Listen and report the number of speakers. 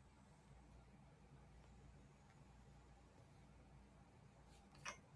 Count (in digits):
0